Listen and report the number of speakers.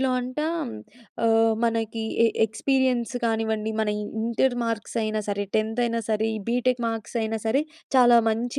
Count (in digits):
1